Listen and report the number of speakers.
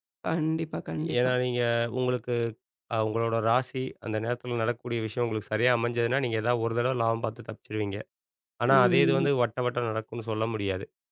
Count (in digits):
2